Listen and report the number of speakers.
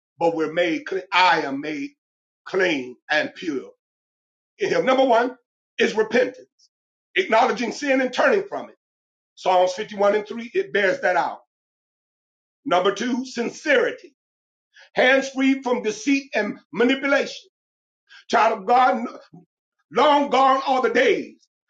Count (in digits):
1